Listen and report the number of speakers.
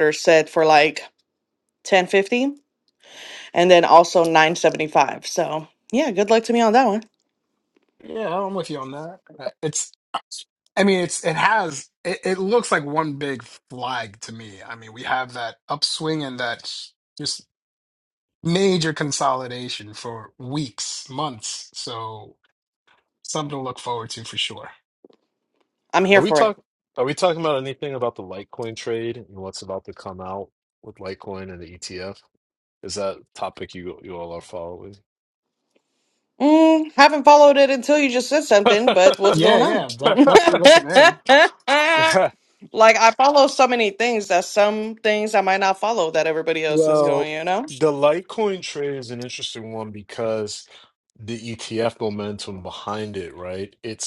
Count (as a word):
three